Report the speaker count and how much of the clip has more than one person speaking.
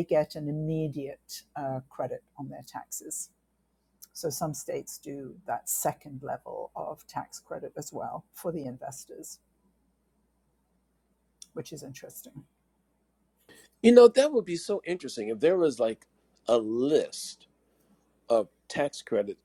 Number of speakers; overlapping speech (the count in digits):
2, no overlap